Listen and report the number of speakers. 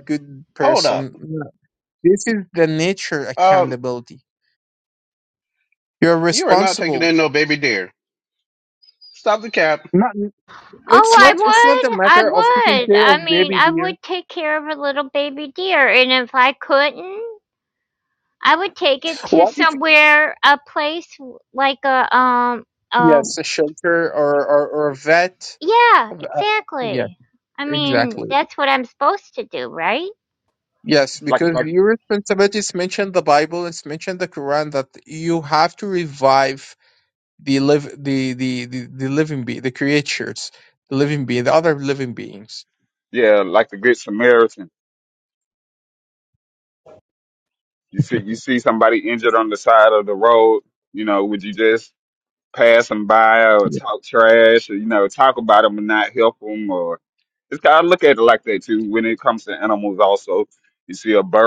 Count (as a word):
four